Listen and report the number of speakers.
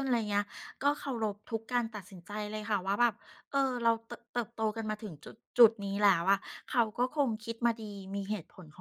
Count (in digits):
1